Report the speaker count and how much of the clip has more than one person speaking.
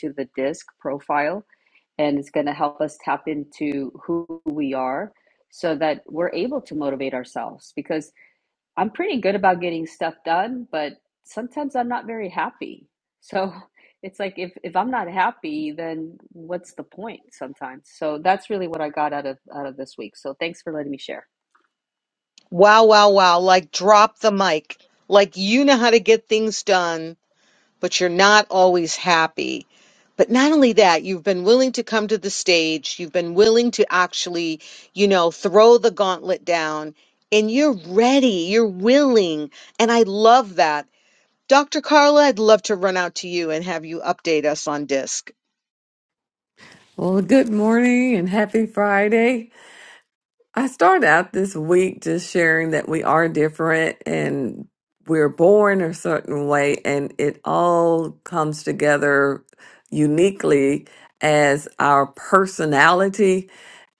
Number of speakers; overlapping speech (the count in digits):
3, no overlap